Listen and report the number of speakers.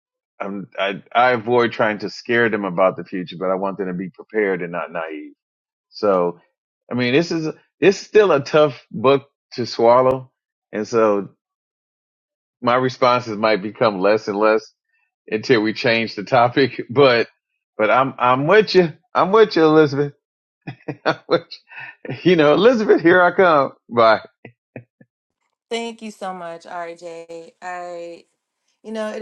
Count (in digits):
2